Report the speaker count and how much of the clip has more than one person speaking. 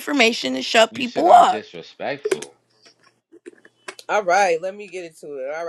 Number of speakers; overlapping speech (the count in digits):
3, about 12%